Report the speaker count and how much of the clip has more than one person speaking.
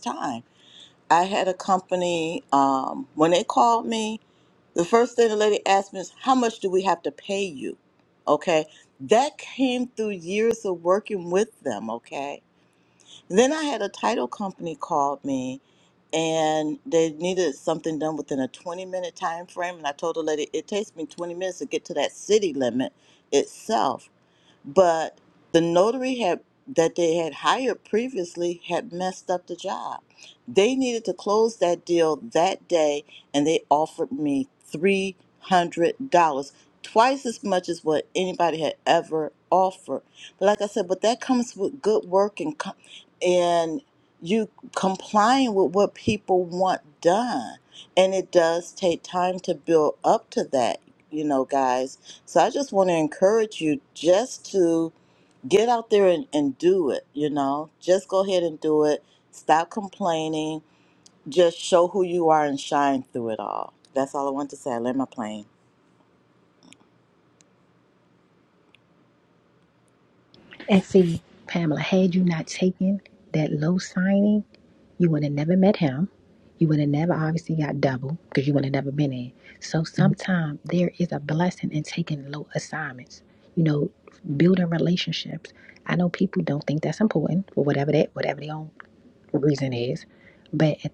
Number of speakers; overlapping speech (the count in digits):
2, no overlap